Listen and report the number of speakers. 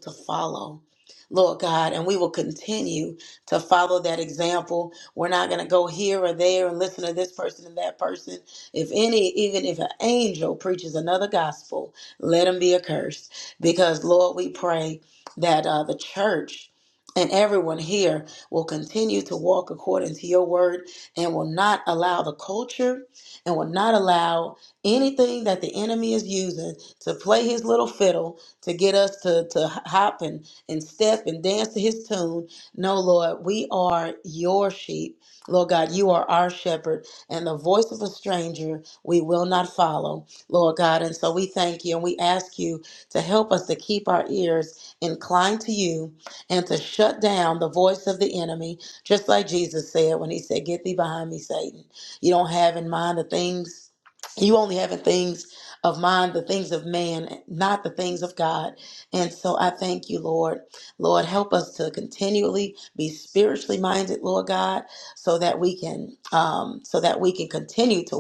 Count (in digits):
1